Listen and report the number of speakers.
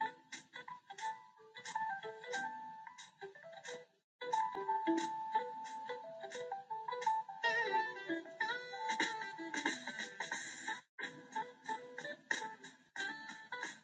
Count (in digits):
0